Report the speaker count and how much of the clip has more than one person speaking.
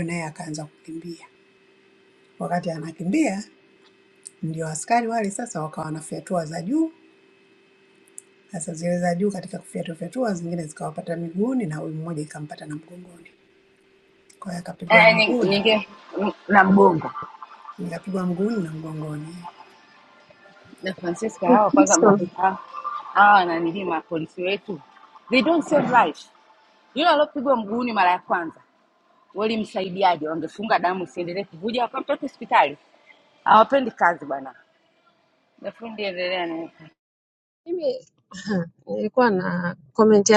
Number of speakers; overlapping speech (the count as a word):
three, about 3%